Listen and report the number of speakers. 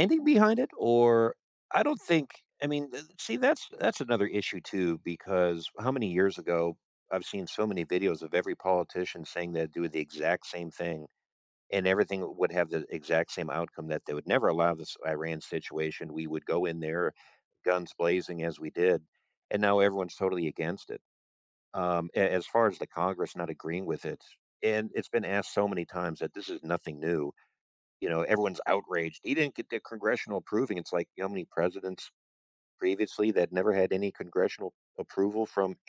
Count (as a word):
one